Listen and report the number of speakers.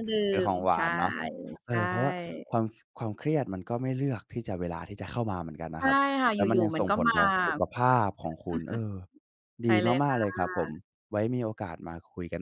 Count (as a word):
two